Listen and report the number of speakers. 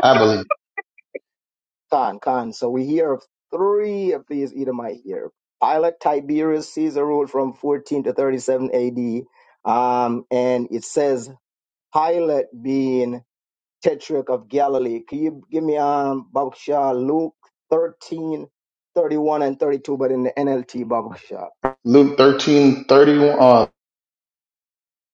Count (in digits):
2